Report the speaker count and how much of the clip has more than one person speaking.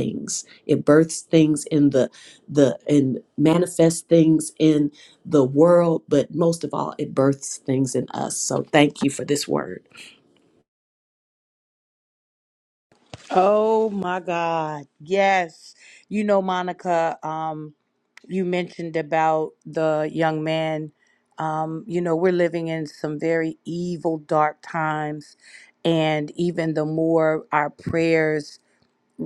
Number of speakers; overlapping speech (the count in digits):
2, no overlap